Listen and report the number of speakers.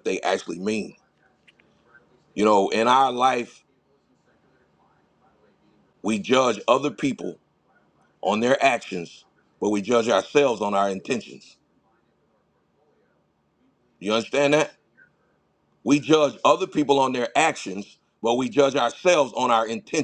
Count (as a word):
one